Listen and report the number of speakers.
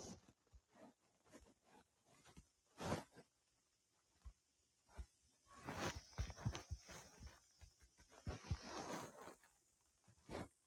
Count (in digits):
0